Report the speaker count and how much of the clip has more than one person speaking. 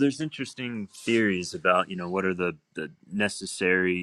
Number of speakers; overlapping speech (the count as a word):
one, no overlap